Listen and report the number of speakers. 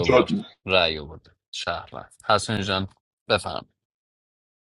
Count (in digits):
1